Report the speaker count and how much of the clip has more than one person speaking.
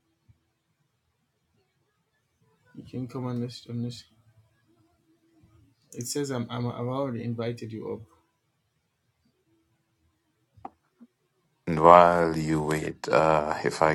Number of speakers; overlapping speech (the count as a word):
two, no overlap